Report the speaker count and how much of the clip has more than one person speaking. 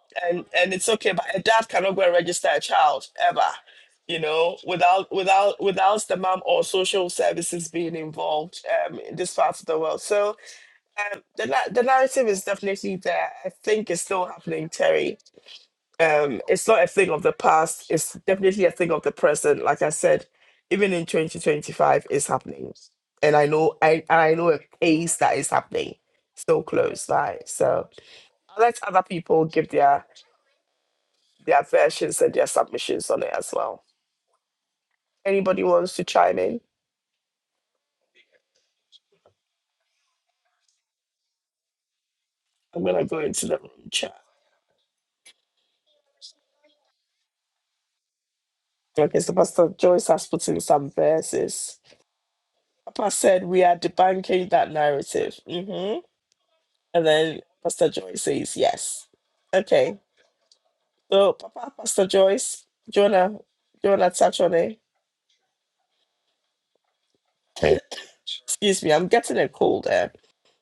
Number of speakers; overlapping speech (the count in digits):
1, no overlap